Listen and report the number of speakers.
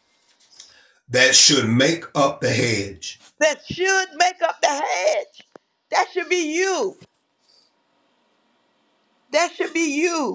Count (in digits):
2